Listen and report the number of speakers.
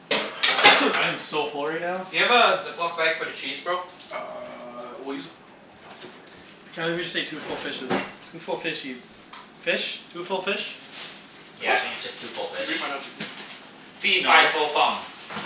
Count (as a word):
four